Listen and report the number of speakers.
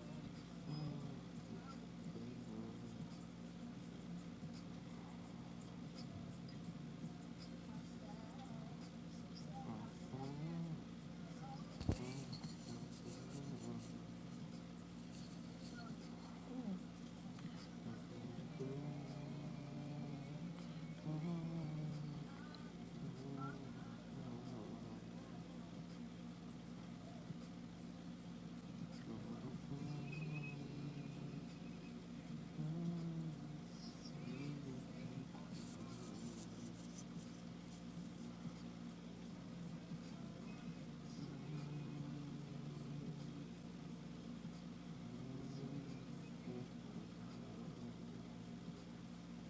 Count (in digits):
0